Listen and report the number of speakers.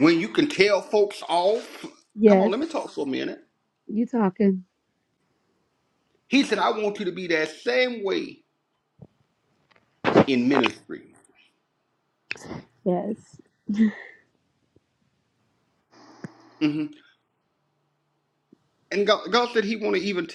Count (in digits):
2